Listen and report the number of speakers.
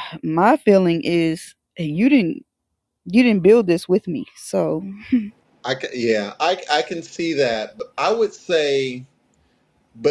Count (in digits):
2